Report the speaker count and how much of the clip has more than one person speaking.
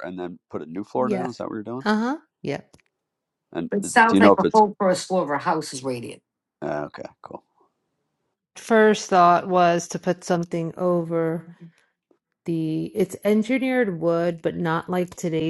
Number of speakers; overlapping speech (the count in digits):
3, about 8%